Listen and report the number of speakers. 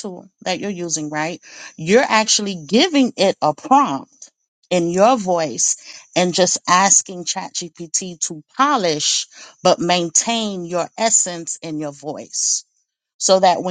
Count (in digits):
1